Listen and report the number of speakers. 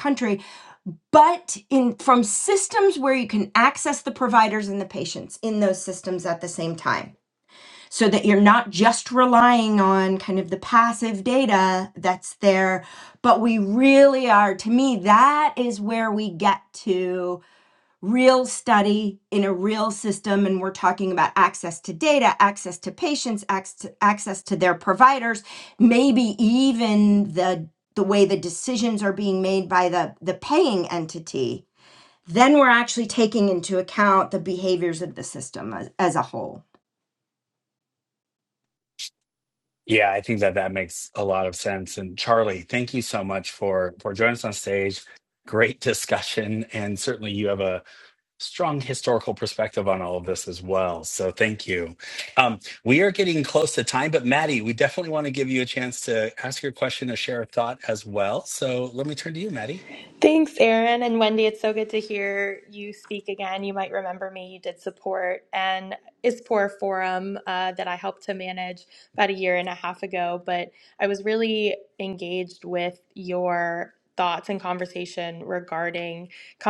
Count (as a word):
three